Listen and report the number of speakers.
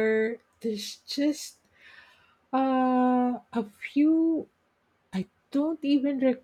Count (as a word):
one